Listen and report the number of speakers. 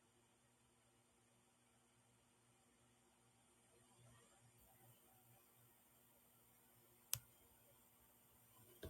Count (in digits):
0